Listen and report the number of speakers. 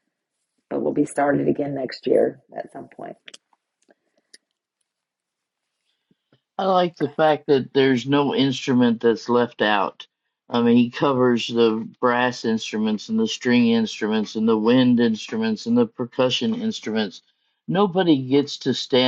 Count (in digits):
2